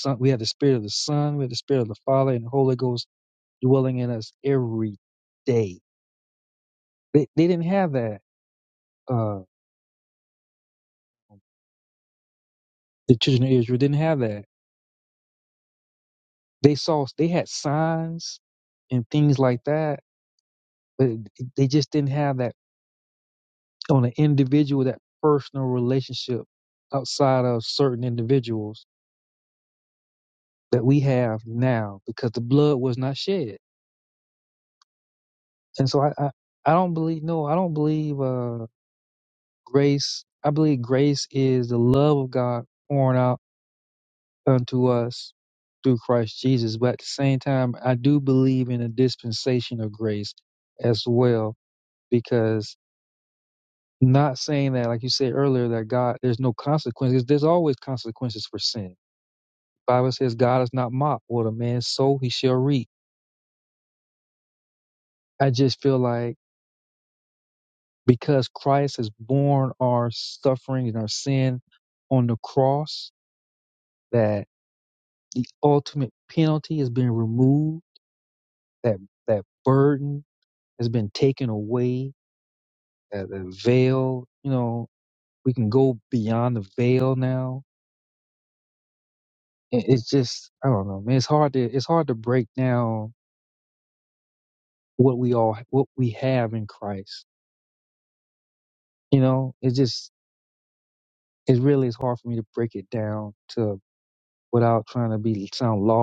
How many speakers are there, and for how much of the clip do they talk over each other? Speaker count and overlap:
1, no overlap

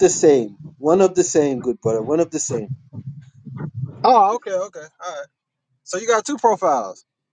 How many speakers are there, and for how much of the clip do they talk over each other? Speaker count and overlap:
2, no overlap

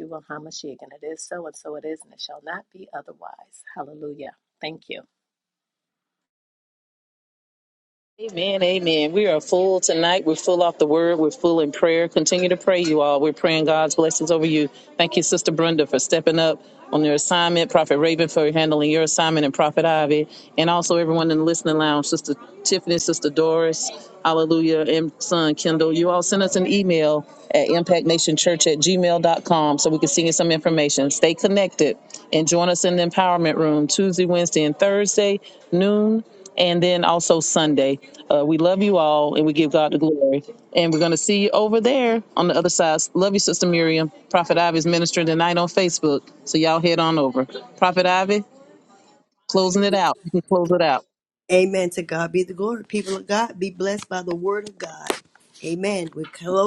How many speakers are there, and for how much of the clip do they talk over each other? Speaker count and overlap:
3, no overlap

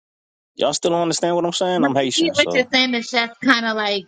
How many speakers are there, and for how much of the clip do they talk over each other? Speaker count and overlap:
2, about 21%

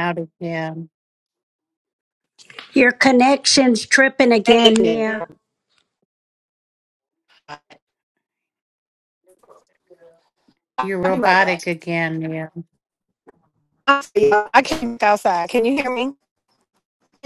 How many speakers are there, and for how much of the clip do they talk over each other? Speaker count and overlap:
3, about 9%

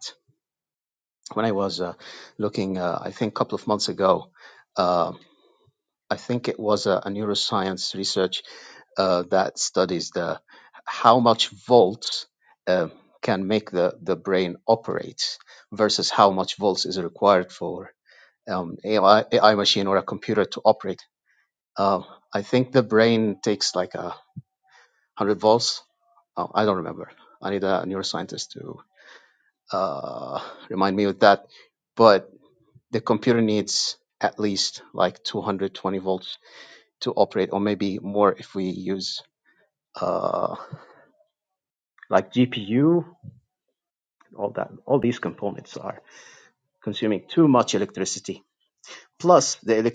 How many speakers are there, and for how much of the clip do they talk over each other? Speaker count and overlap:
1, no overlap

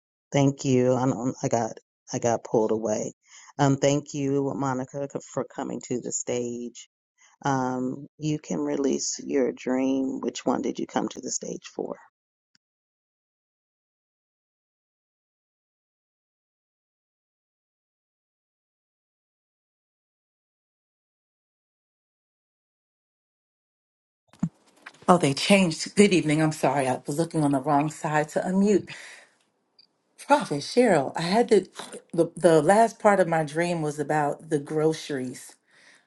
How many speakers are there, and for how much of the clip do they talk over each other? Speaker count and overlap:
2, no overlap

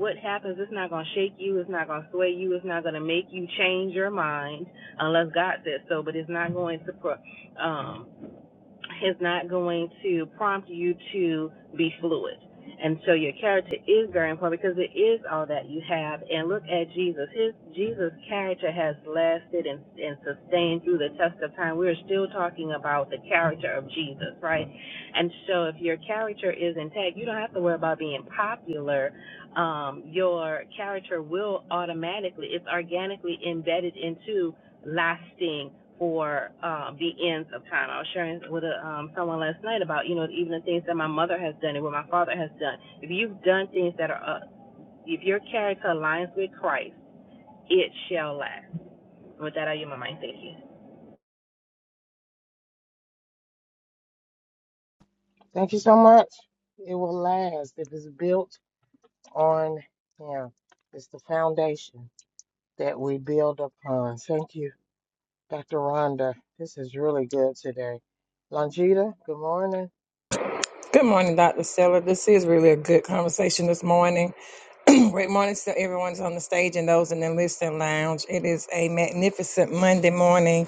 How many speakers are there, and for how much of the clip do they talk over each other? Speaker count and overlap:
3, no overlap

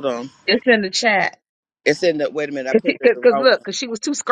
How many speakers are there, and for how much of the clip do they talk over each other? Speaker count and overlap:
2, about 19%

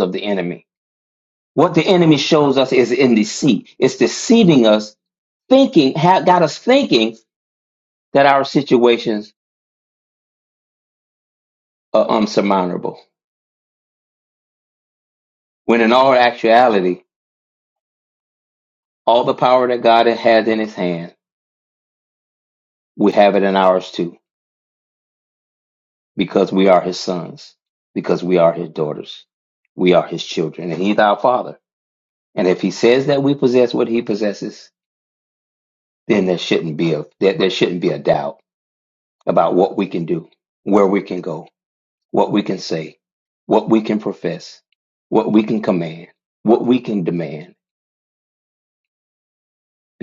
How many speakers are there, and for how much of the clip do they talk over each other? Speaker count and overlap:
1, no overlap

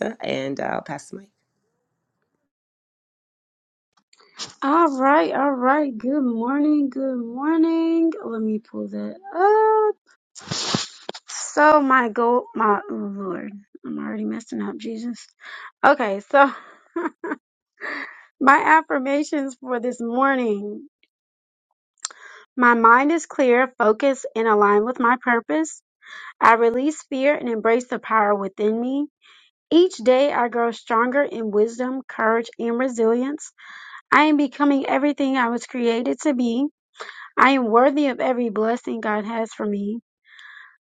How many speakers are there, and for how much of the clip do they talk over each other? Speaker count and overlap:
2, no overlap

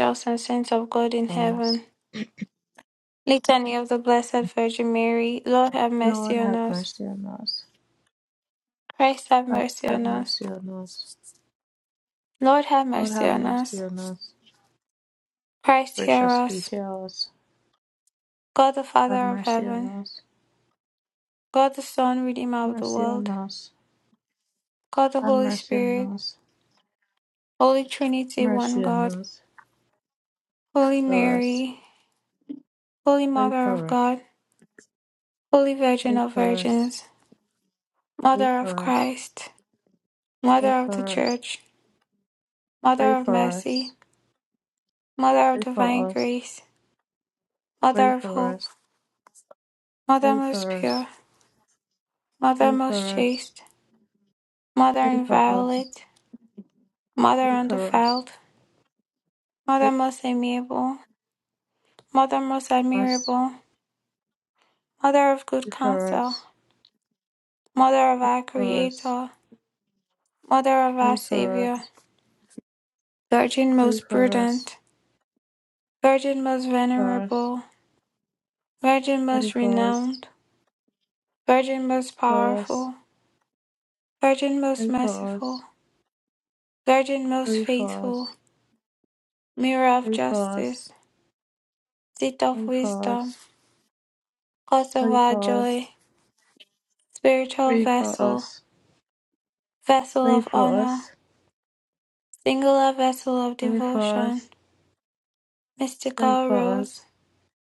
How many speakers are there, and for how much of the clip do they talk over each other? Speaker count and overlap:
2, about 21%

